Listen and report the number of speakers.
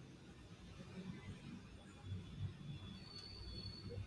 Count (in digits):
0